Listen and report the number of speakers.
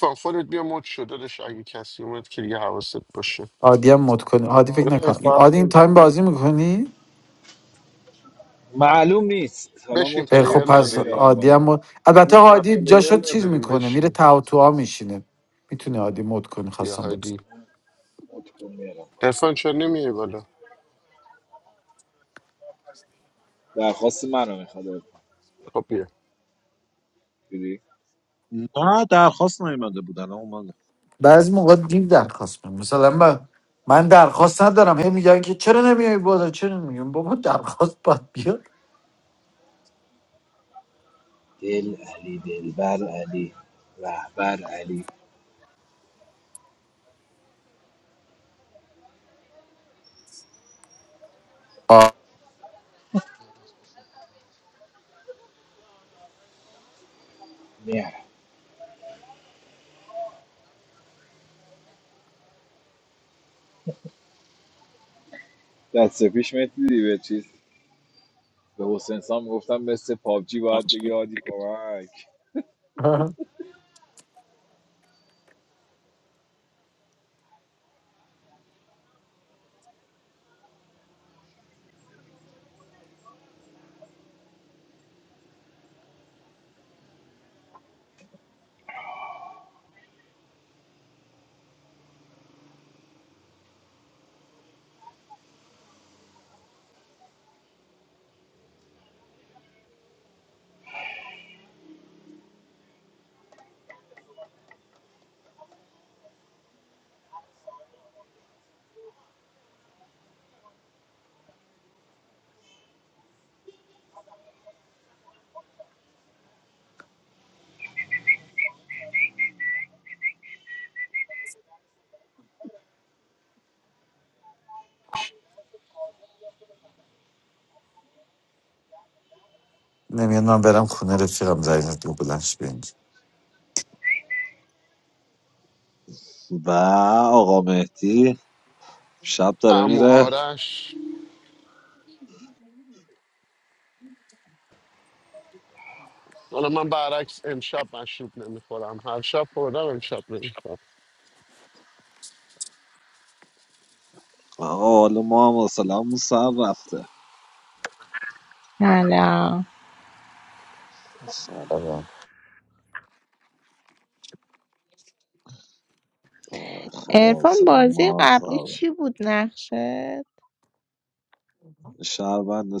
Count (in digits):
5